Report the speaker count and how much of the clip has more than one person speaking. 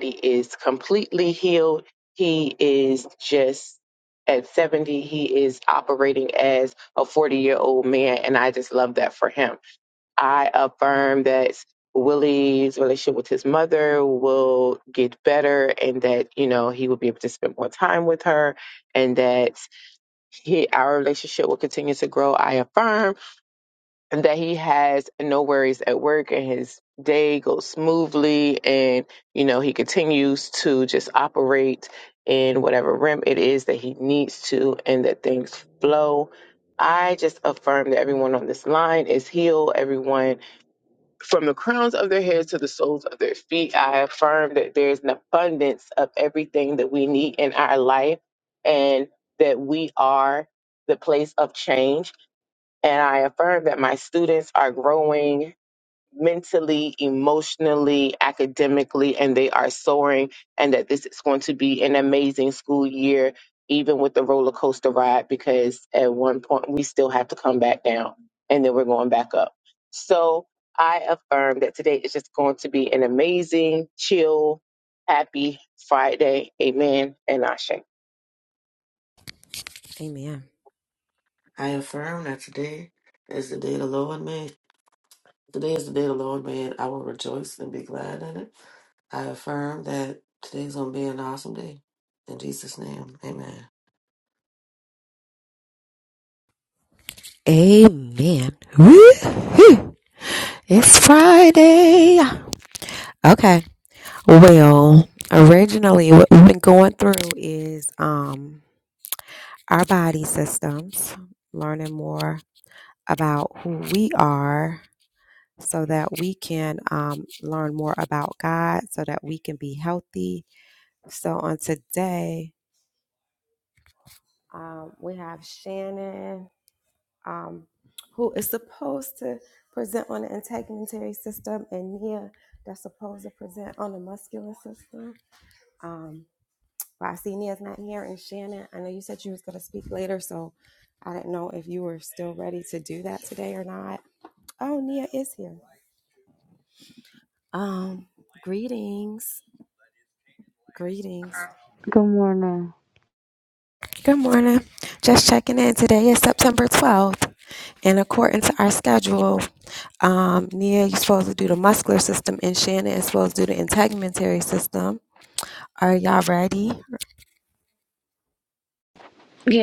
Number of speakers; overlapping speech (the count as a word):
four, no overlap